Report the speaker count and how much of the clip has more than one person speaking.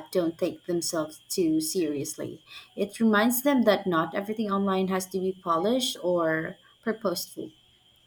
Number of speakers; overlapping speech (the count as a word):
one, no overlap